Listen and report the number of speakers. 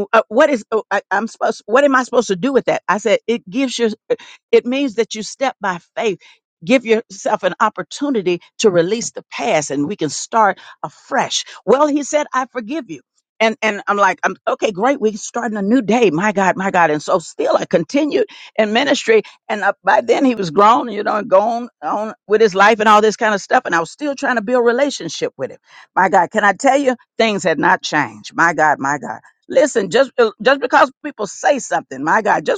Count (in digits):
1